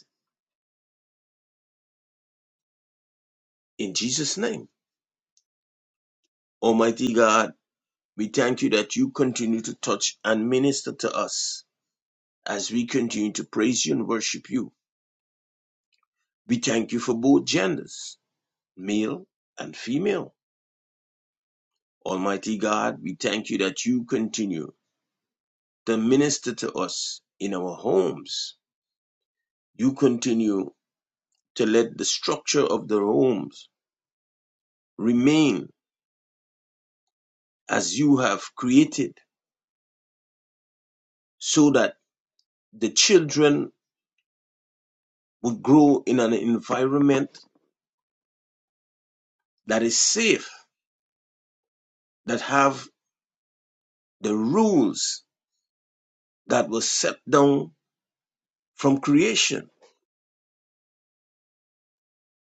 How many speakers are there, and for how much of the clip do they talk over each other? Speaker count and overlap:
1, no overlap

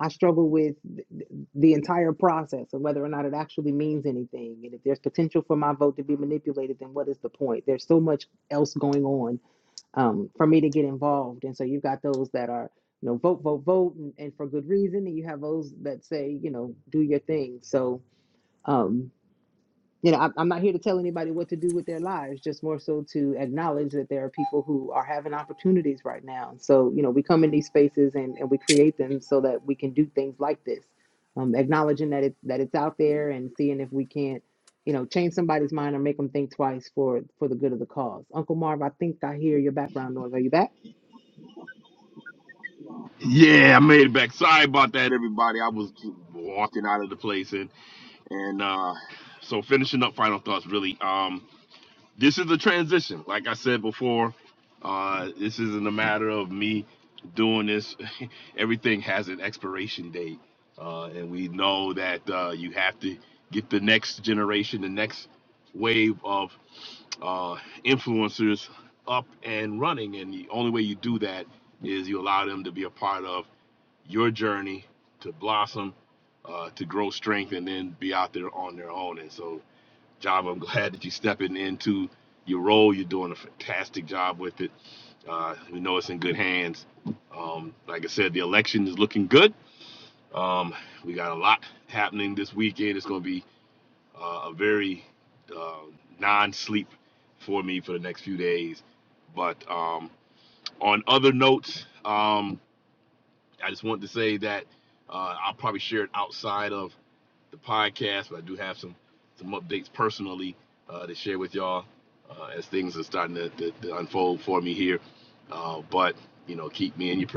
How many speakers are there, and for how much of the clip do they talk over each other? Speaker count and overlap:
2, no overlap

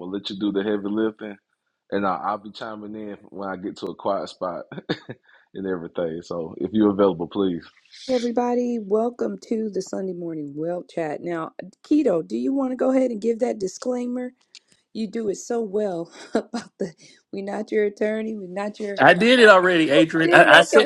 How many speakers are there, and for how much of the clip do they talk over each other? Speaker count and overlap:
3, about 3%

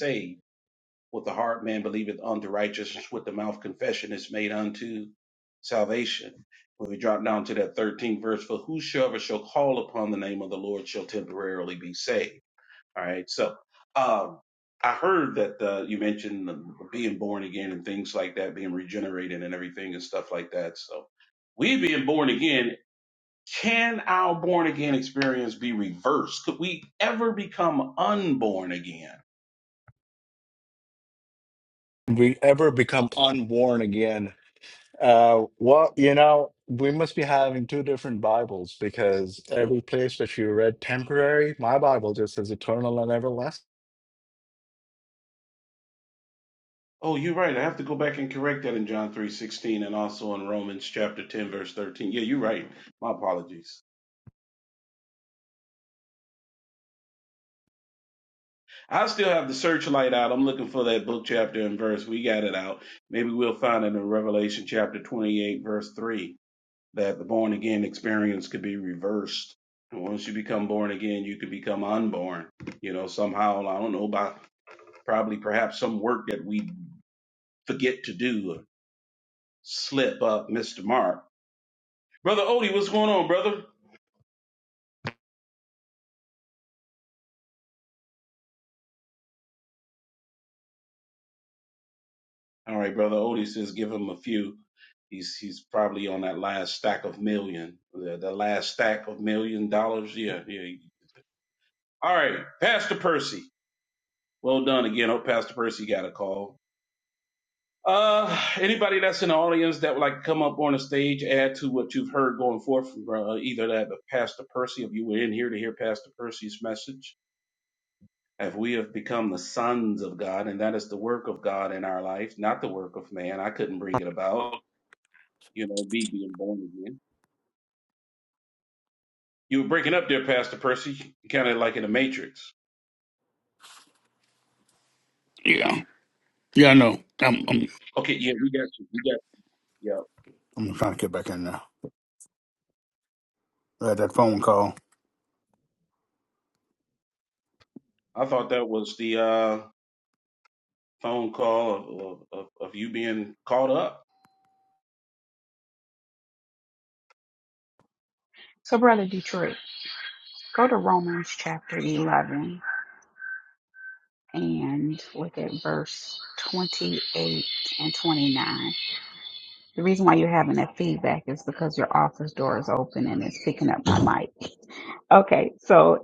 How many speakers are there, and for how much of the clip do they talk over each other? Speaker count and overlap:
4, under 1%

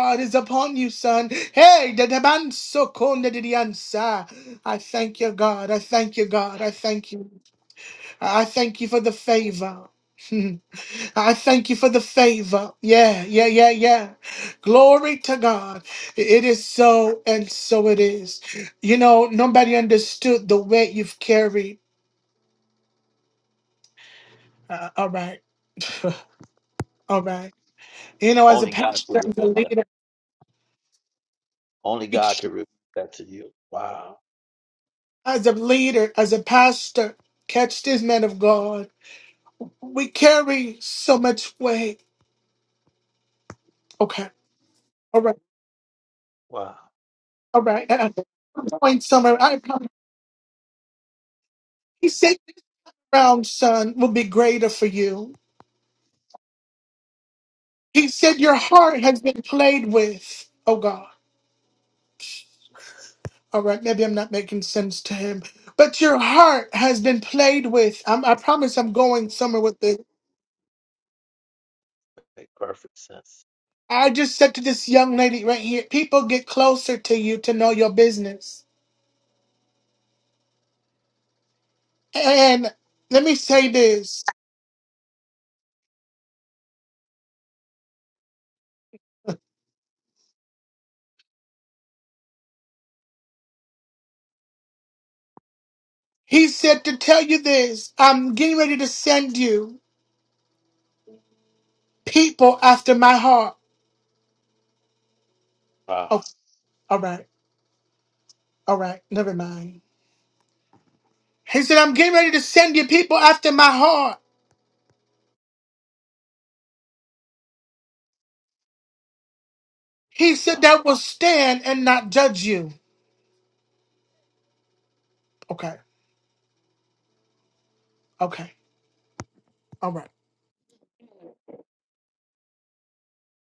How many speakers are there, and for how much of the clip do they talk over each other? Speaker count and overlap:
2, about 1%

